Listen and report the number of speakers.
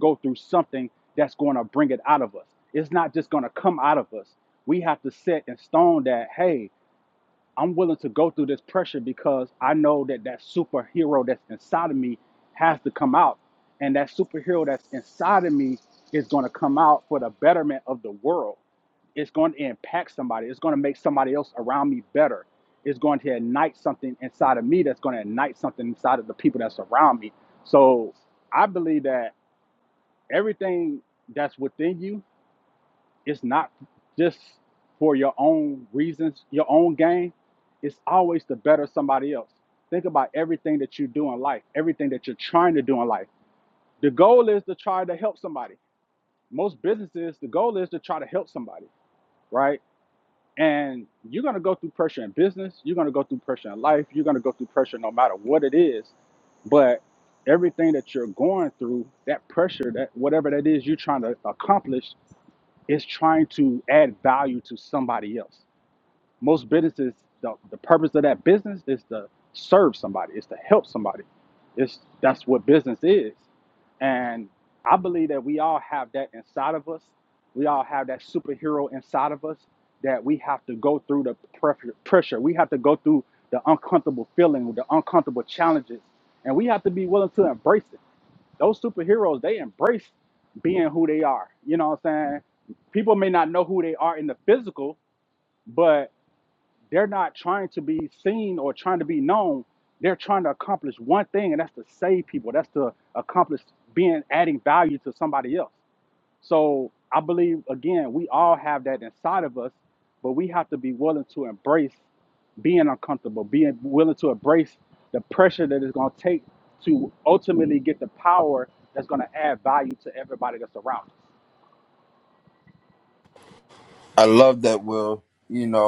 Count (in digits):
2